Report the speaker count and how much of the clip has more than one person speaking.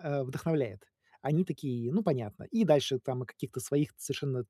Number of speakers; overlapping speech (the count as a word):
one, no overlap